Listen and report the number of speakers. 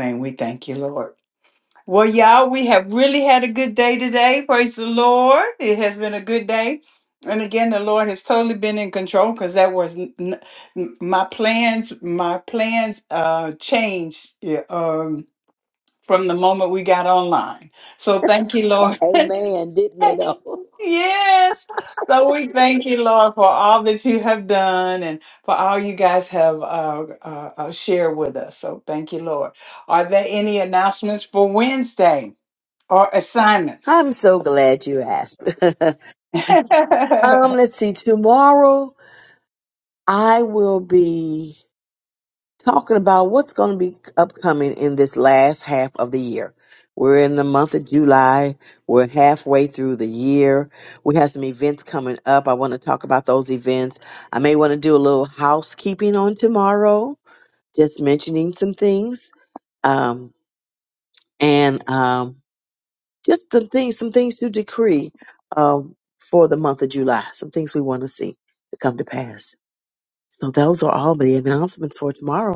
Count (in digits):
3